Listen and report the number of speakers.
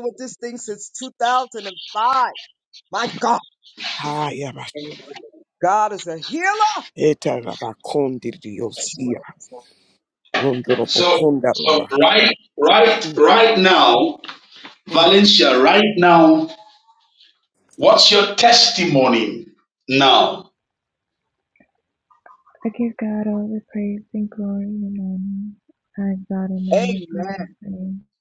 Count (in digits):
4